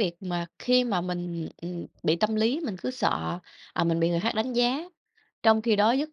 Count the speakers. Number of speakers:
one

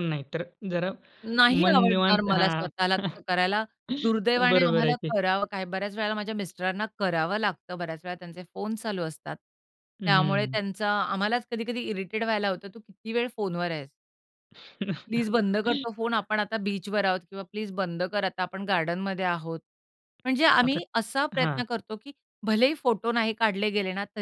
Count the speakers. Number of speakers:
two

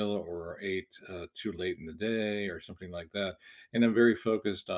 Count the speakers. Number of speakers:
one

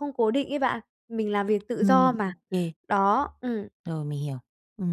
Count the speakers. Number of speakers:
two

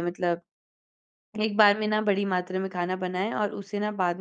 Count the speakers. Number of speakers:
one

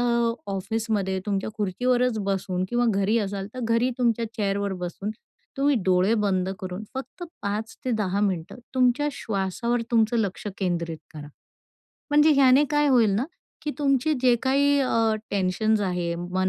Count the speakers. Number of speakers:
one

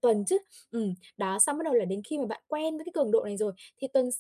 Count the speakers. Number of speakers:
one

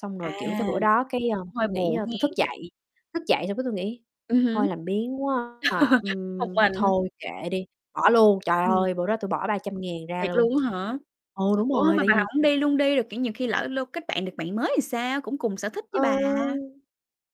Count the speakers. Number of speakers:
two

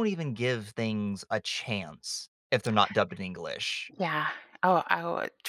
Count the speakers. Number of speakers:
two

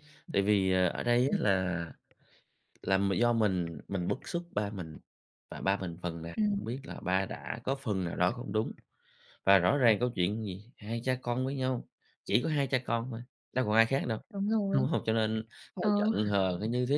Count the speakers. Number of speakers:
two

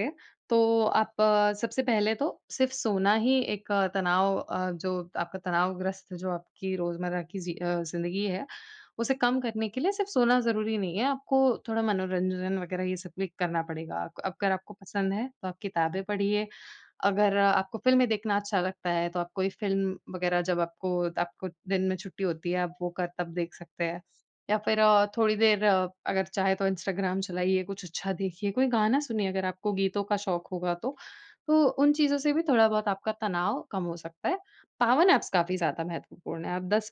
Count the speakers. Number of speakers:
one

